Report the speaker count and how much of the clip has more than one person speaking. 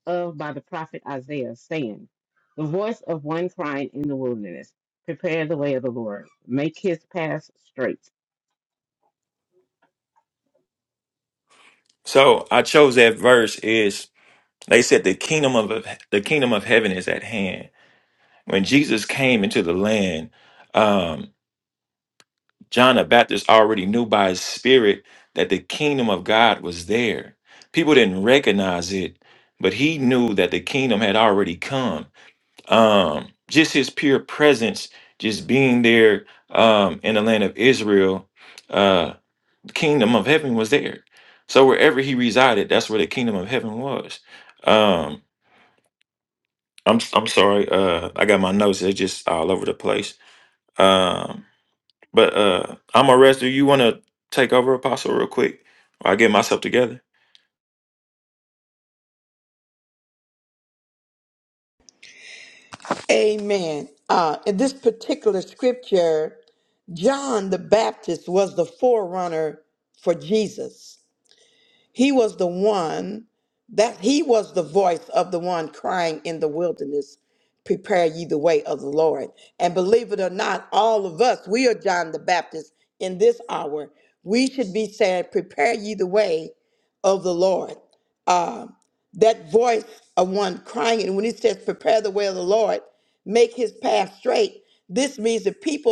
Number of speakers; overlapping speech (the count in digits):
3, no overlap